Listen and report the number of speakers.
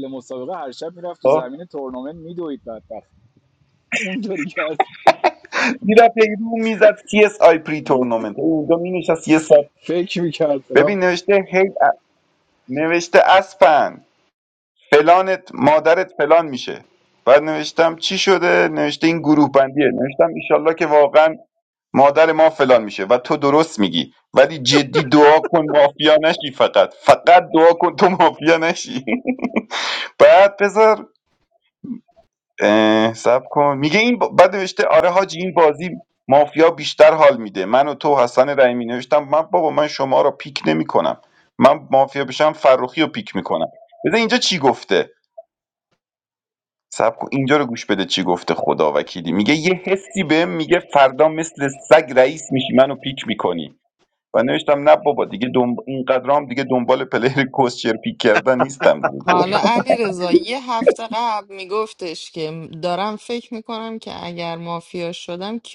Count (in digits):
3